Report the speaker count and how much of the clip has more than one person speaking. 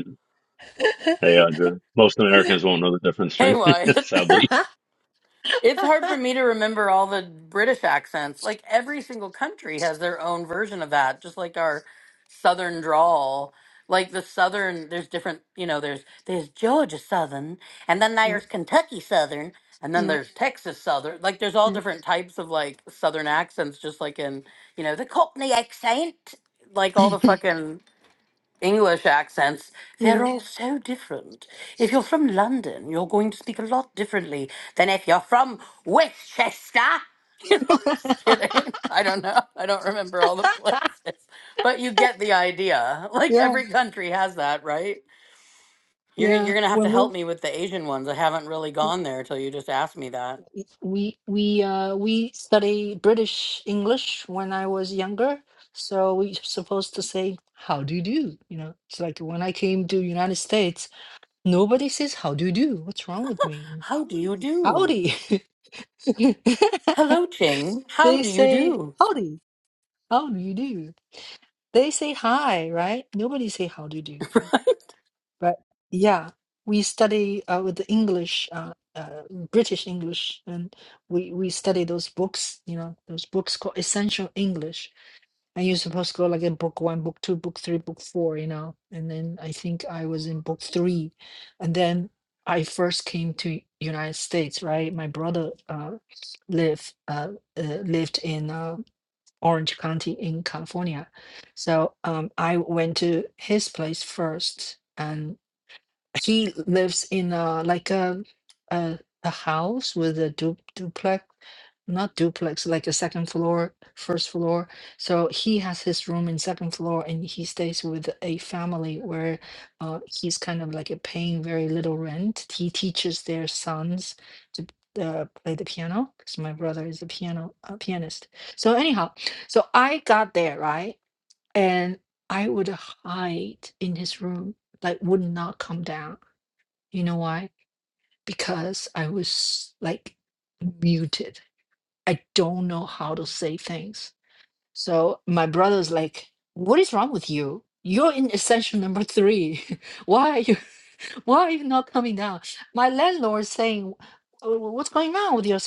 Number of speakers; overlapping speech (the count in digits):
3, about 2%